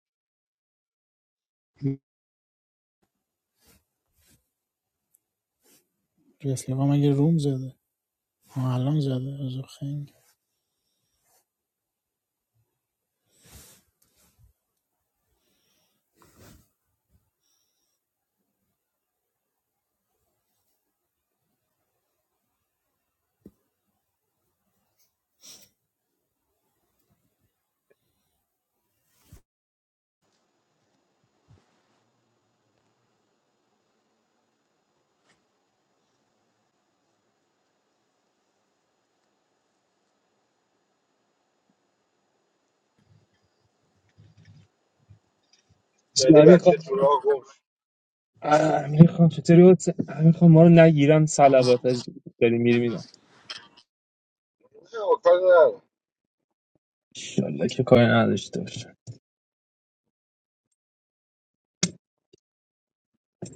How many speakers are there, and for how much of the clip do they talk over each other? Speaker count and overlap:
three, about 1%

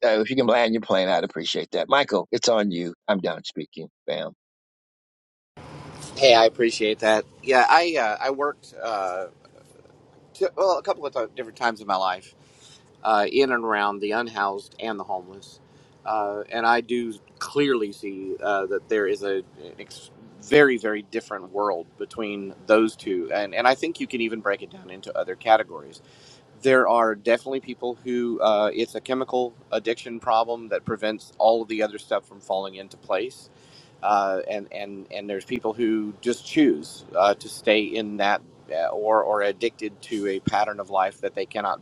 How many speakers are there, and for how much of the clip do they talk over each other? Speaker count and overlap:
two, no overlap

